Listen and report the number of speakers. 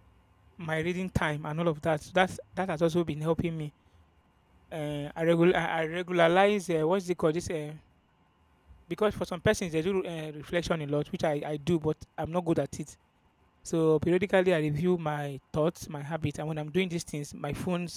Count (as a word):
one